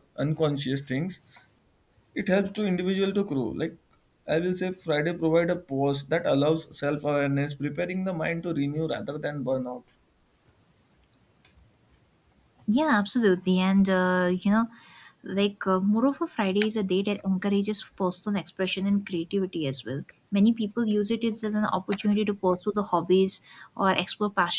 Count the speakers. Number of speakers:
two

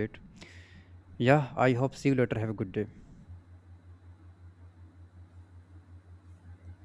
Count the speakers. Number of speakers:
one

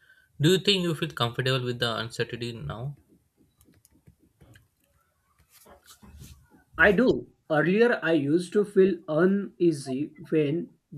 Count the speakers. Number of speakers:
two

